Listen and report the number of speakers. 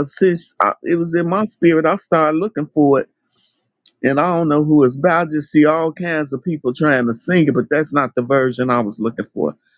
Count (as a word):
one